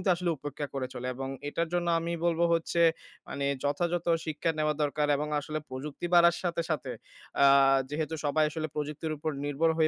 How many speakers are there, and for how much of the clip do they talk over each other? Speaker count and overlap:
1, no overlap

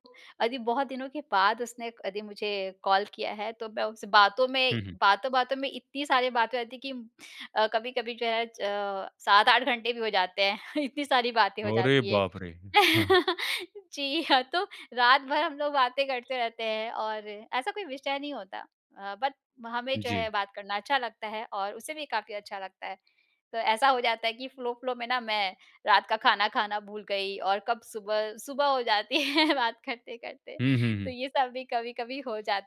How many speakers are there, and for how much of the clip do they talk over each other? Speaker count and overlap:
2, about 4%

